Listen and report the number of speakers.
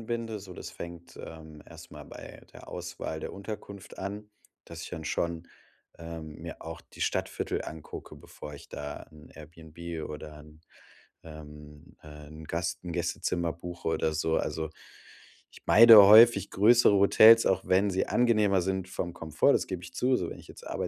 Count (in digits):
1